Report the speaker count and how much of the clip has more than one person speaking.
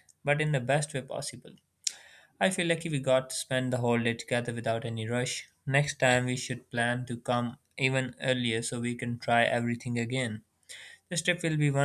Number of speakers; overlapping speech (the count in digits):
1, no overlap